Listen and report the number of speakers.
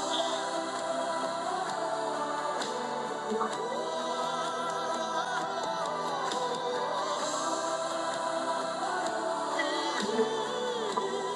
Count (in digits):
0